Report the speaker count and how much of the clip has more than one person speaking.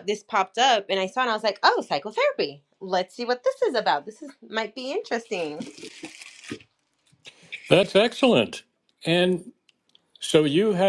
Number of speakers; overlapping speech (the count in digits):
2, no overlap